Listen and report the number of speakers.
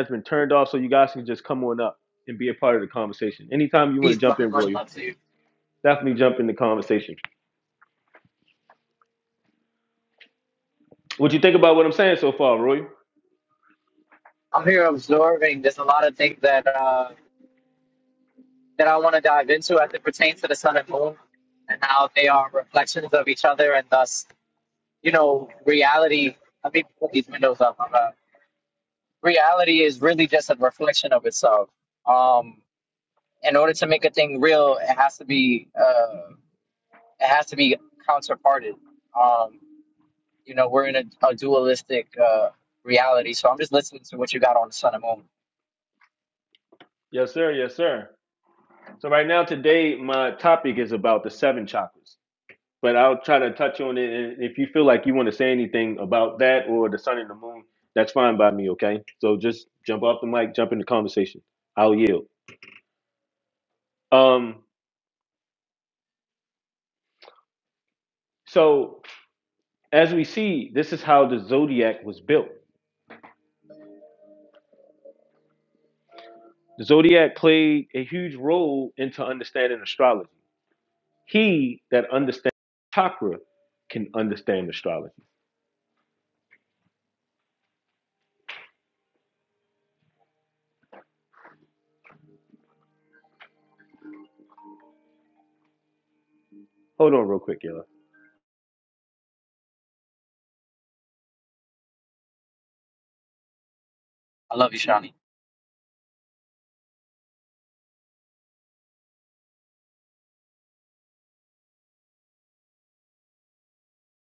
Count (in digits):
2